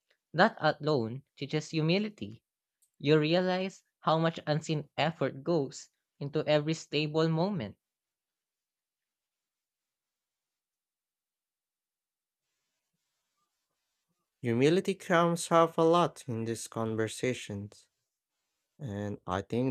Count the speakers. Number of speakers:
two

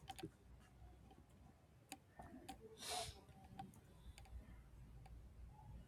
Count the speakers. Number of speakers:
zero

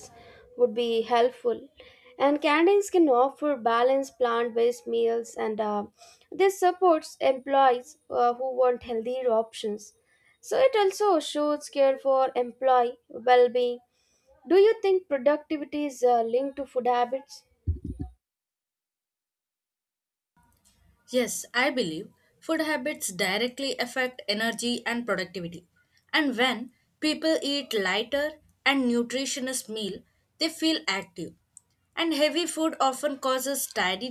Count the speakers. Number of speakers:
two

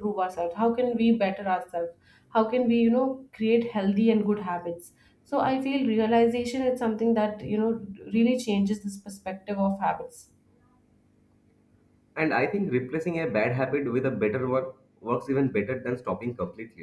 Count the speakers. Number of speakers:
two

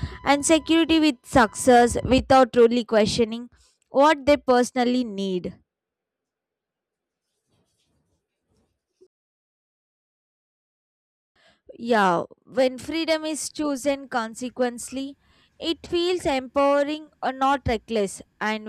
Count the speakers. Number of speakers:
one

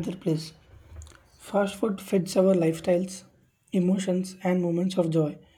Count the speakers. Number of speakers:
one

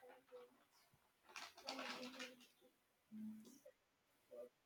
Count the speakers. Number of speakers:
zero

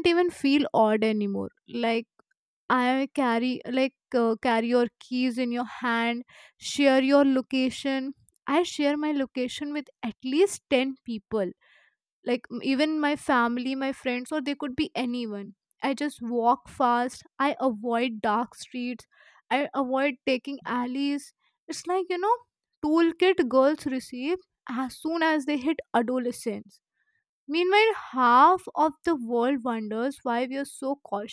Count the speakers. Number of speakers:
one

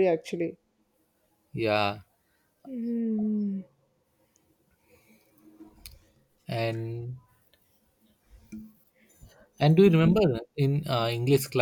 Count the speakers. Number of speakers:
two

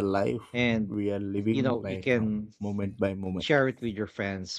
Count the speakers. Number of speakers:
two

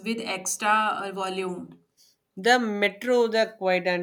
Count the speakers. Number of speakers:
two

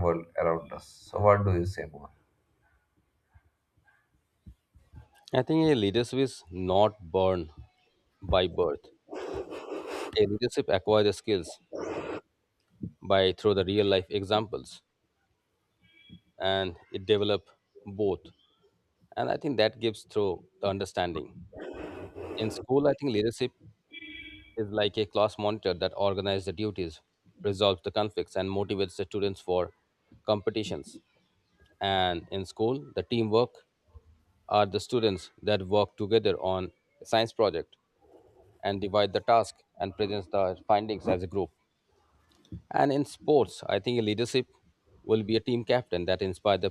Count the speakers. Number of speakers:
two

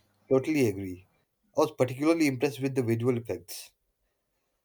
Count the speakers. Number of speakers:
one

